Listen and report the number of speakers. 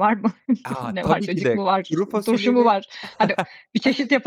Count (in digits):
2